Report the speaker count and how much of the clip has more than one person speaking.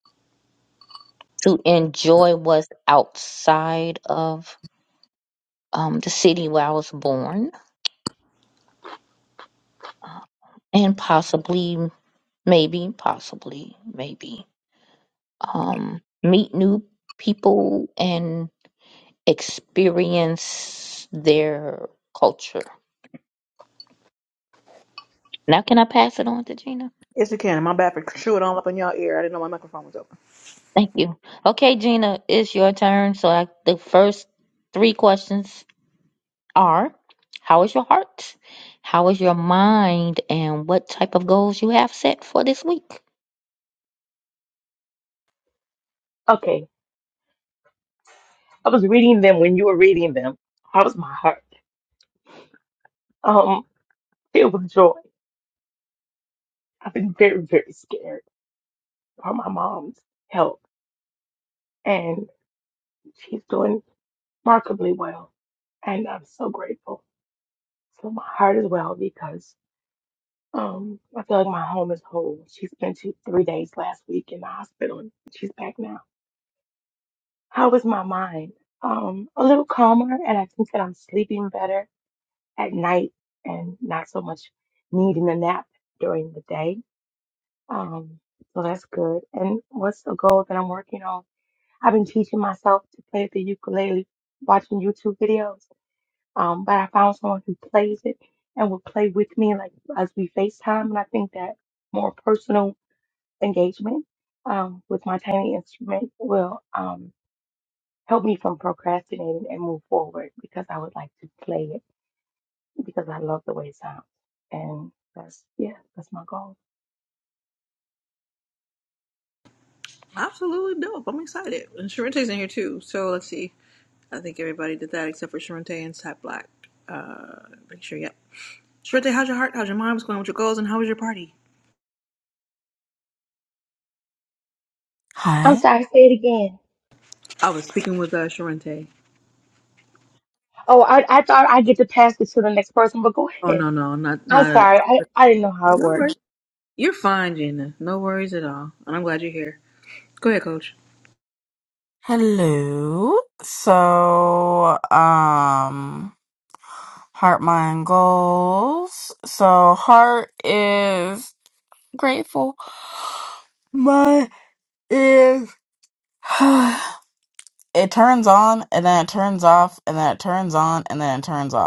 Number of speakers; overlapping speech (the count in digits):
4, about 1%